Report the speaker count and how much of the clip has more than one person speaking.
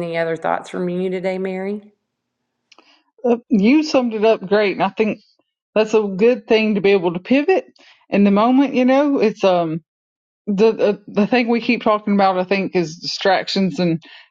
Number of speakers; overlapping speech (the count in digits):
2, no overlap